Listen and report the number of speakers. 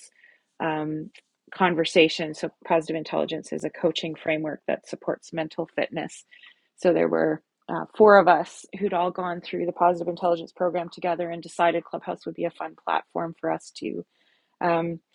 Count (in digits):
1